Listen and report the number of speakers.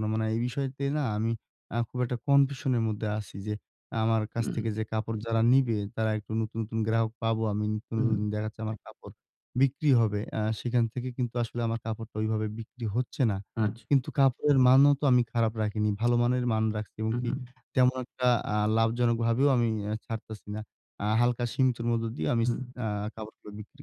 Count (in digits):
2